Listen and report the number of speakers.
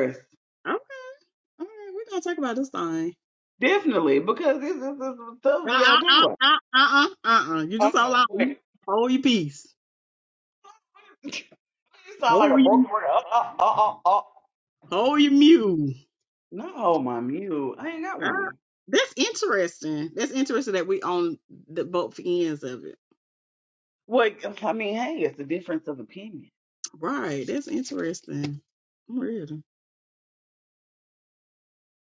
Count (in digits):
2